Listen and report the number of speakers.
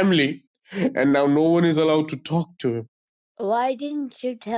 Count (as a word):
two